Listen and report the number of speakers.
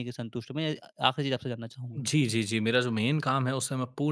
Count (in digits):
2